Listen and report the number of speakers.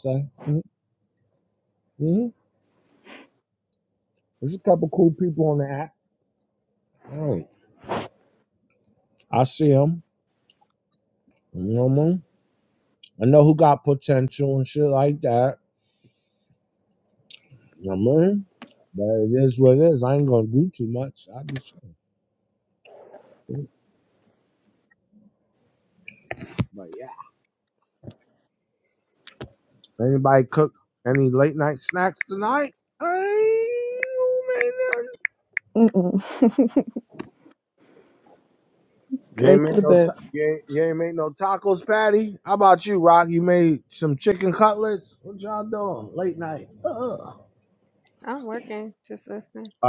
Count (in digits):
3